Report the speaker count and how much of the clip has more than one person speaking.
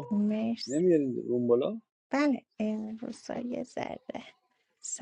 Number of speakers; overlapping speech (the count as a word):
two, about 3%